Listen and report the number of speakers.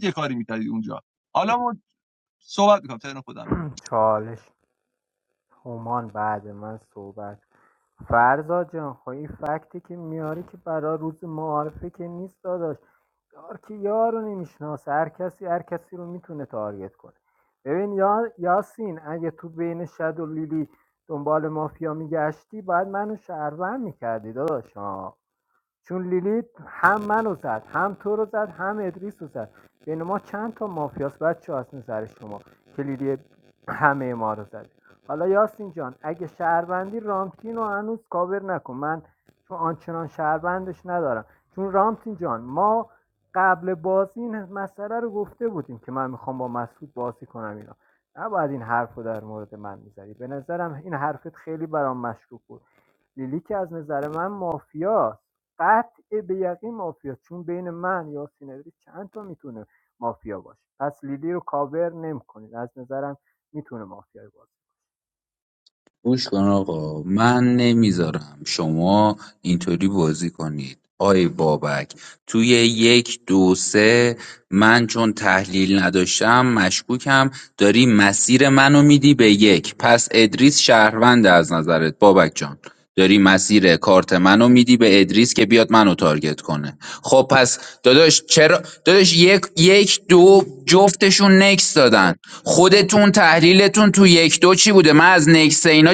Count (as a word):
three